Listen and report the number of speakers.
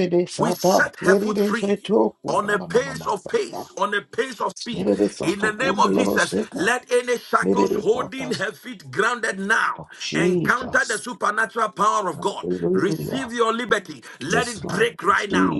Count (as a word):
two